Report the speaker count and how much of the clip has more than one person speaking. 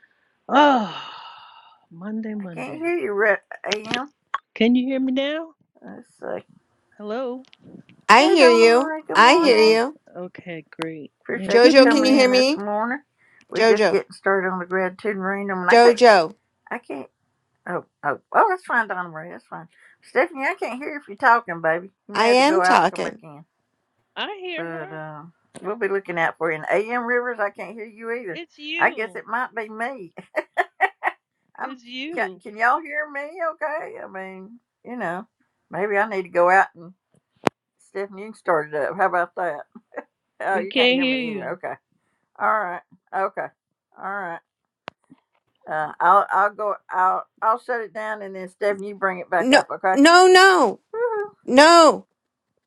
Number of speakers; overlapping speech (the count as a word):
three, about 15%